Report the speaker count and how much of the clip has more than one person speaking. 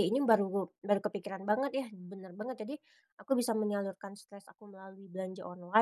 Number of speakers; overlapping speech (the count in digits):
1, no overlap